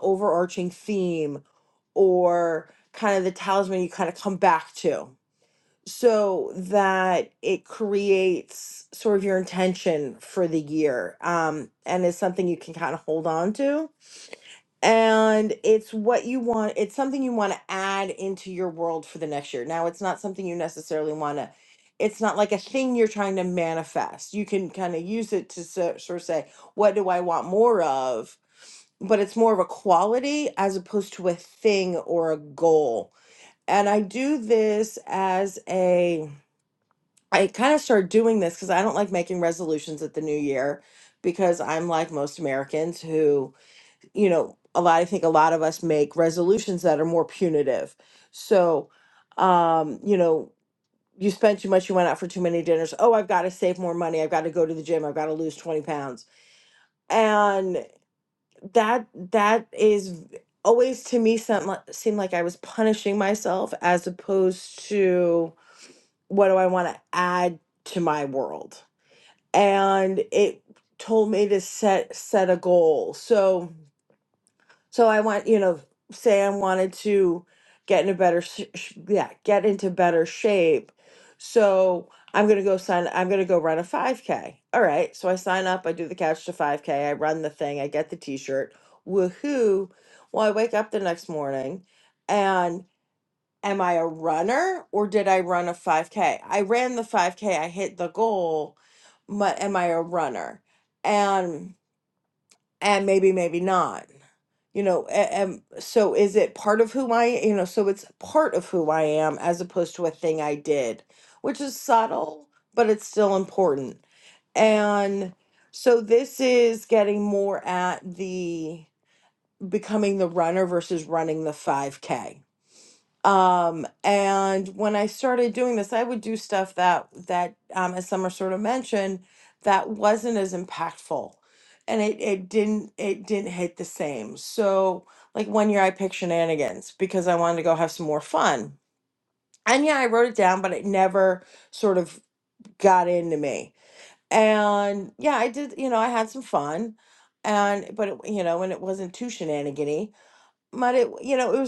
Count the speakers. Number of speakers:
1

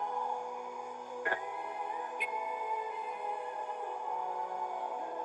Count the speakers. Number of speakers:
0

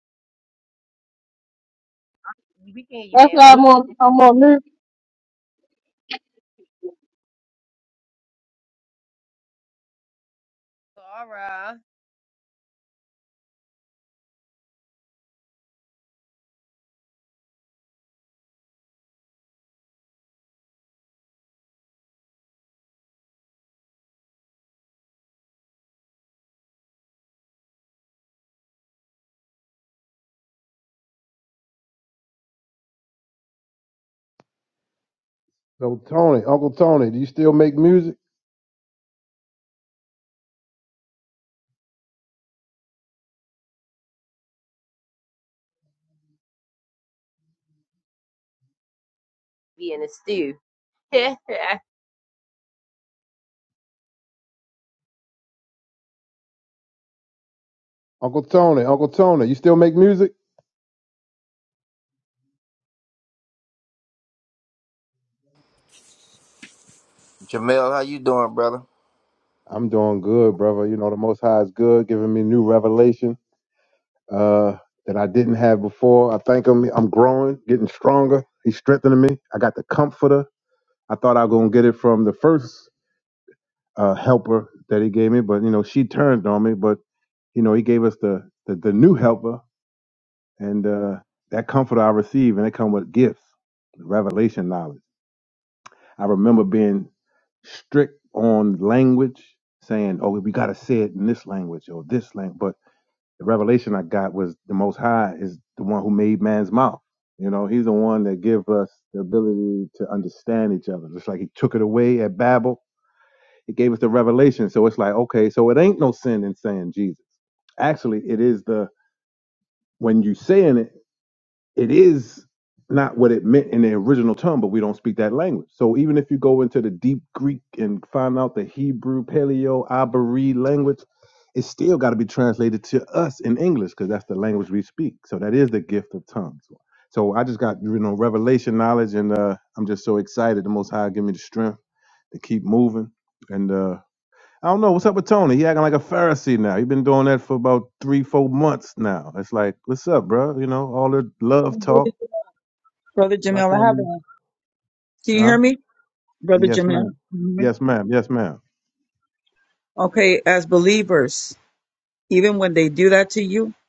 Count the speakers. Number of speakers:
5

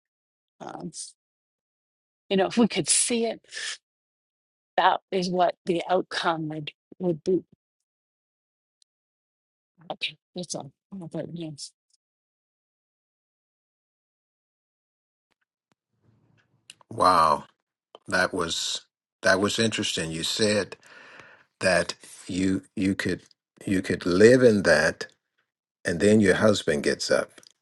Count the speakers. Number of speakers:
2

